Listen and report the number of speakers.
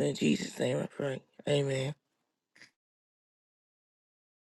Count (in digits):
1